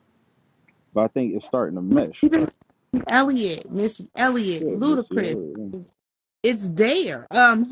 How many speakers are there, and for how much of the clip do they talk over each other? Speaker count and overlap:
2, about 11%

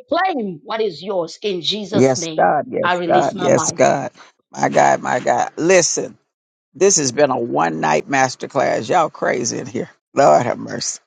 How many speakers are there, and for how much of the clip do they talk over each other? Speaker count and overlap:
2, about 13%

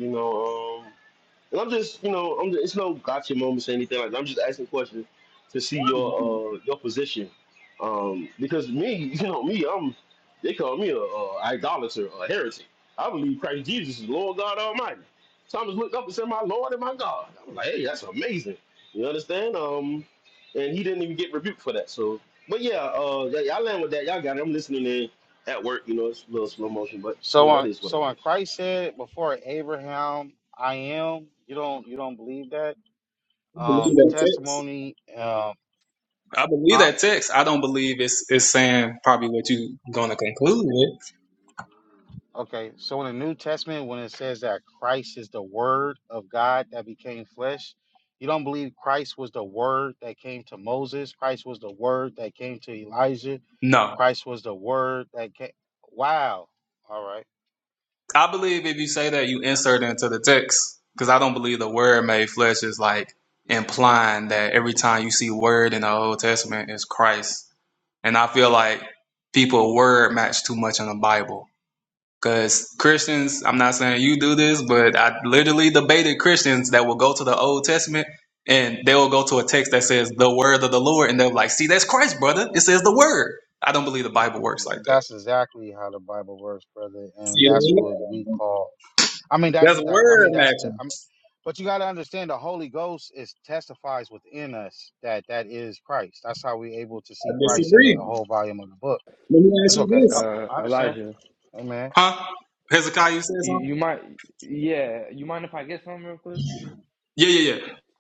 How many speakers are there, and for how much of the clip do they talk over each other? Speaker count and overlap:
4, about 7%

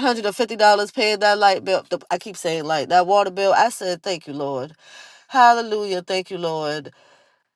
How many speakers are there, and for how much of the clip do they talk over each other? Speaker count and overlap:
1, no overlap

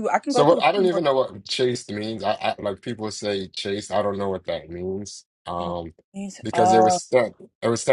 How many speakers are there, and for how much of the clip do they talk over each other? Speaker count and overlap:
2, about 17%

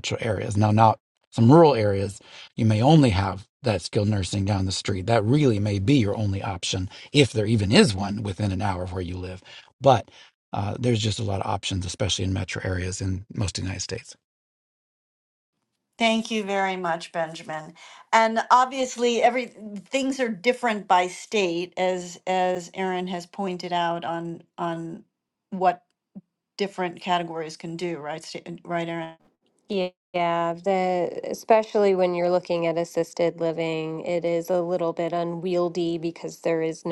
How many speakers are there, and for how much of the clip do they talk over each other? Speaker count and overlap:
3, no overlap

